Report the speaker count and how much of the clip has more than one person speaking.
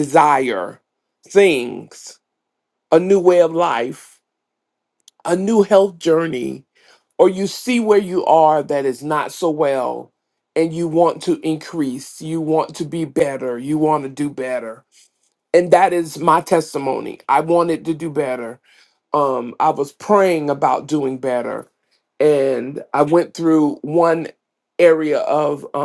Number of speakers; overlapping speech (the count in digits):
1, no overlap